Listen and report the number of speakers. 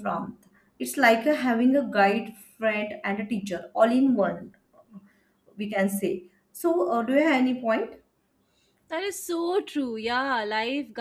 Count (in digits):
2